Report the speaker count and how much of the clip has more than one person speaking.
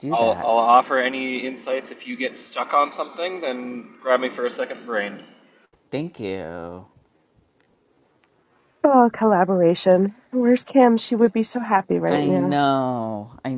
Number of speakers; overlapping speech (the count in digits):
3, about 7%